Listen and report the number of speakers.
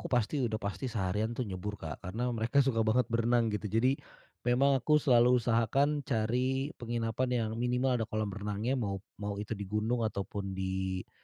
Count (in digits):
1